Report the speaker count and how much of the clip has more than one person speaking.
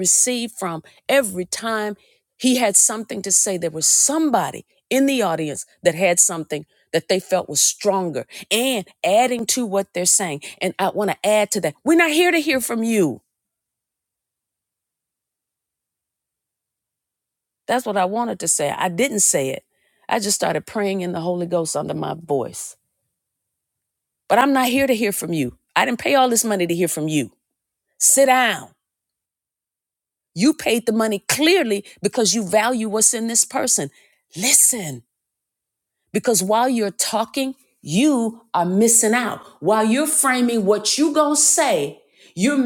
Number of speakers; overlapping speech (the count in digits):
1, no overlap